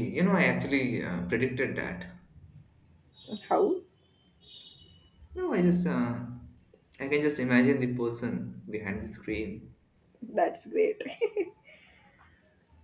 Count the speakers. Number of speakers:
2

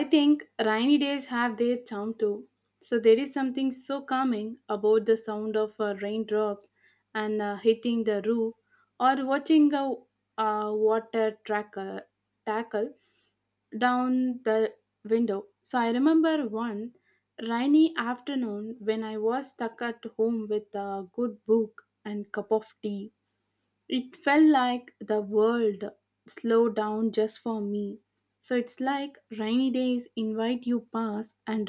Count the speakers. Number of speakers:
1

